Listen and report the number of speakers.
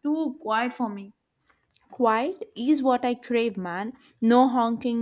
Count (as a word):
two